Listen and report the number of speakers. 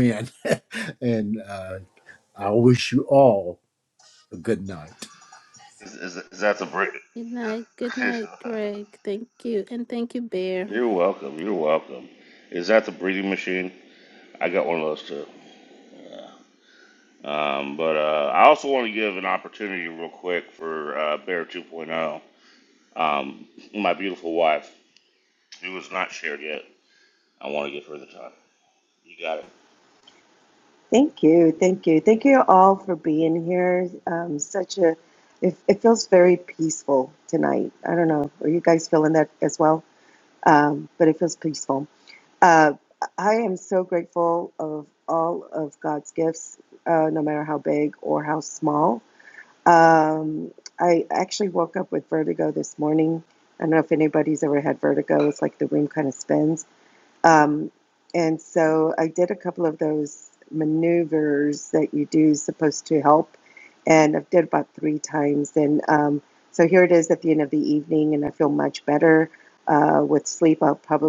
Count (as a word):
four